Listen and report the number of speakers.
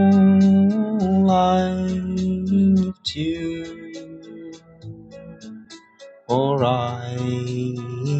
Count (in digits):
1